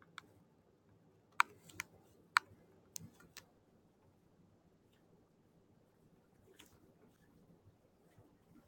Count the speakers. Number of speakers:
zero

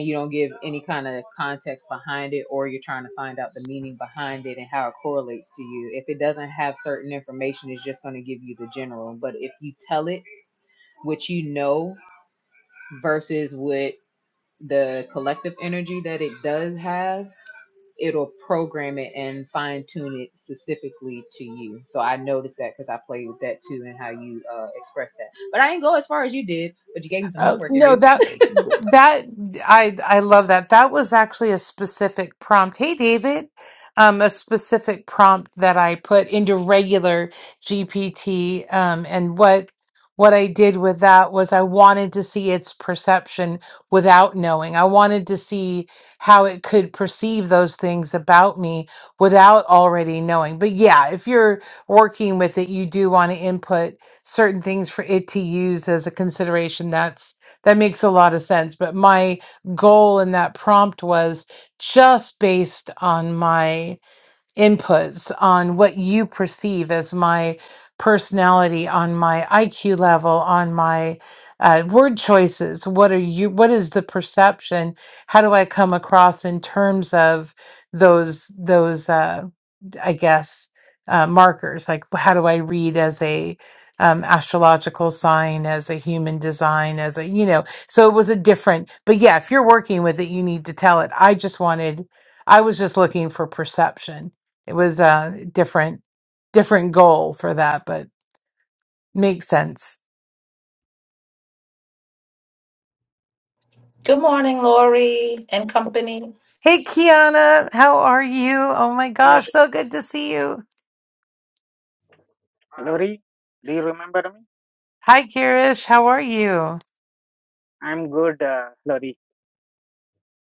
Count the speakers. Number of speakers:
four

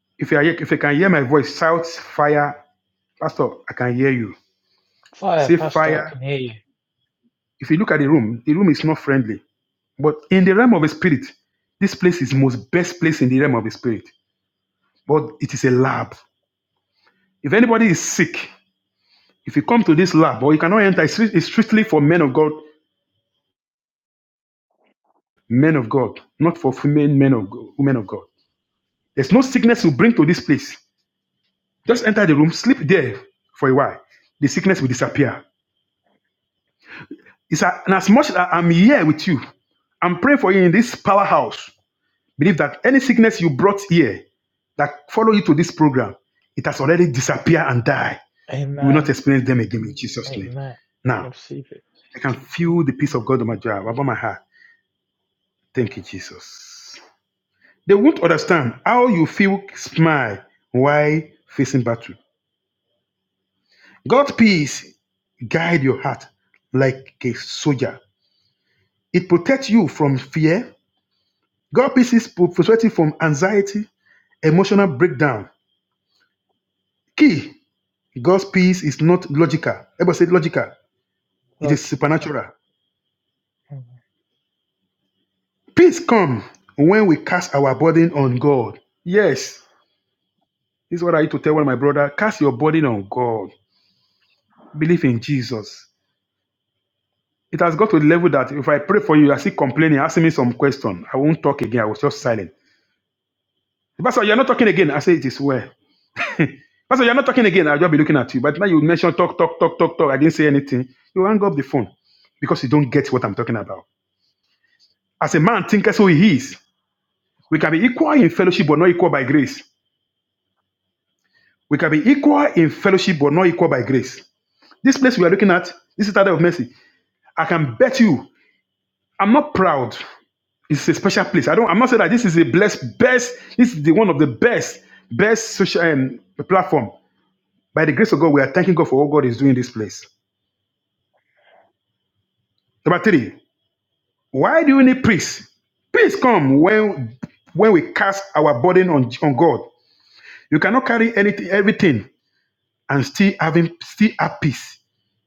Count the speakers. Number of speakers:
two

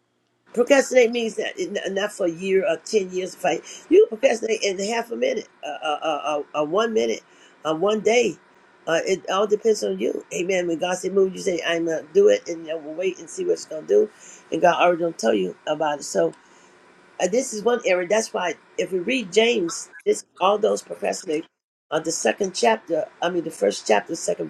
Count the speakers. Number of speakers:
one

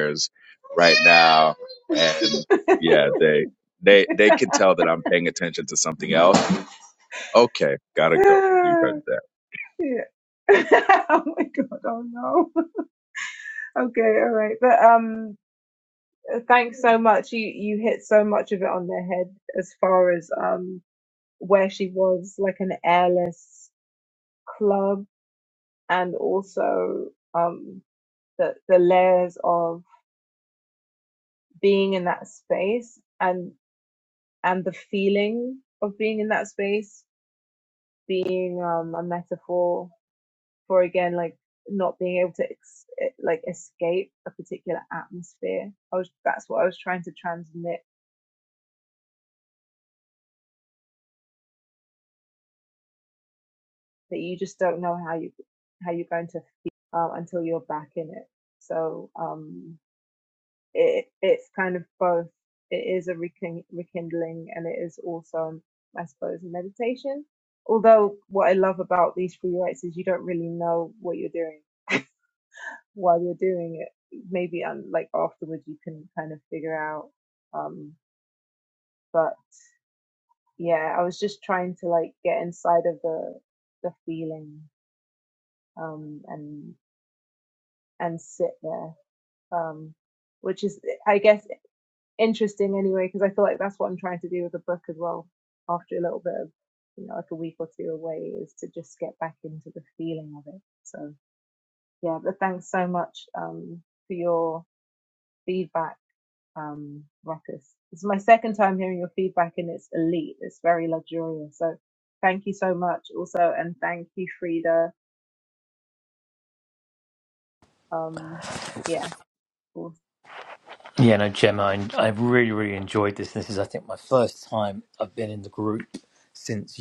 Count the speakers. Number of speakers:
three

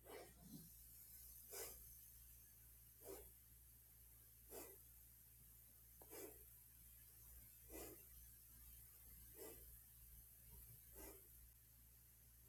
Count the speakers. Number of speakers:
zero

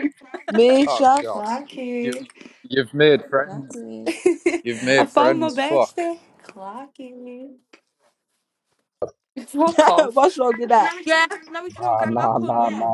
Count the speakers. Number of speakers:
four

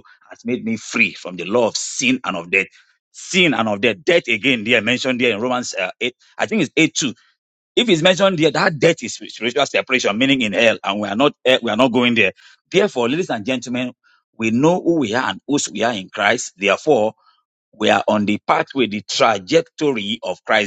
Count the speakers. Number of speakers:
one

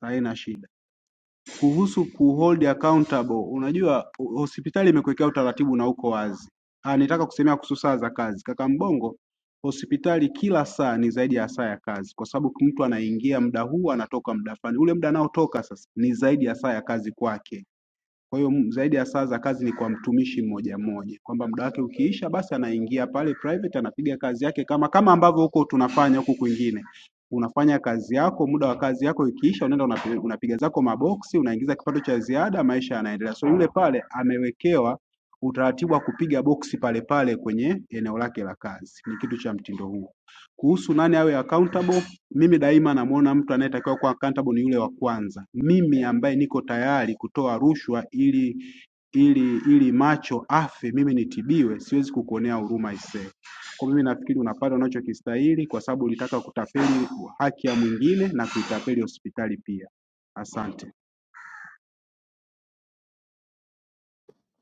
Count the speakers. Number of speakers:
one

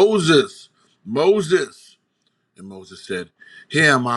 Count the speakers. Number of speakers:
one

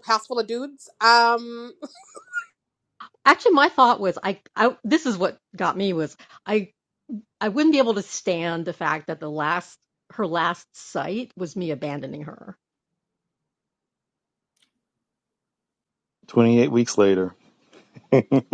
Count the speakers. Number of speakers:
three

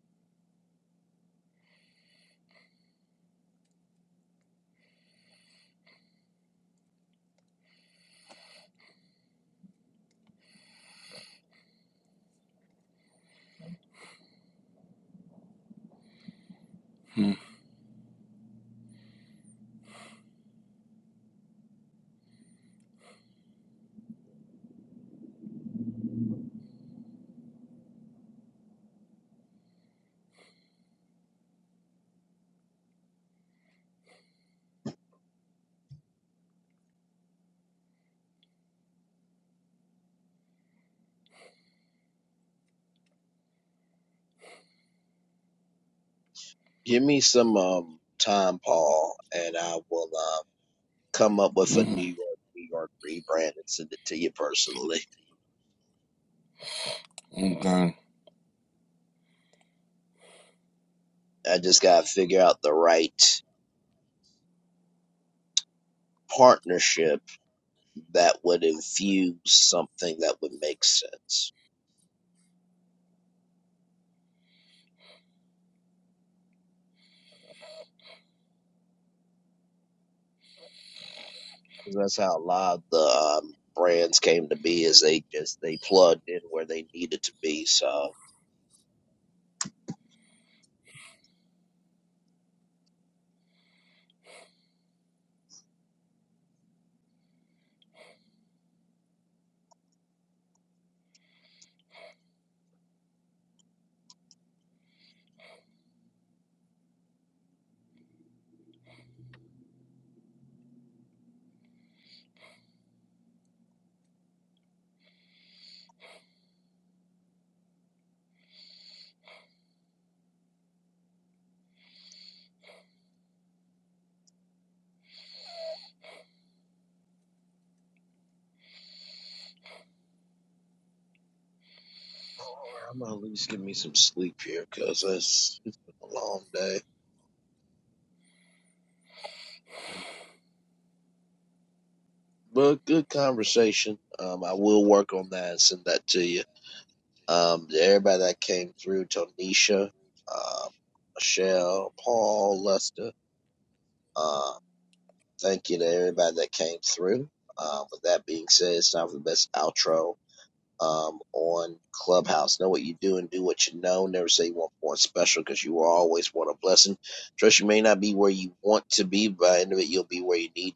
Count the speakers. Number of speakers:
two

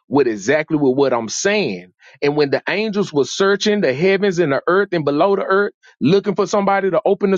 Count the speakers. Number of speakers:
one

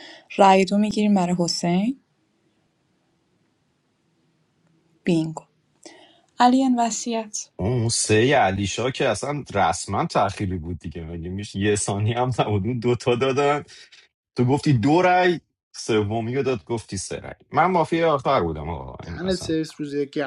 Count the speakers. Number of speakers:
three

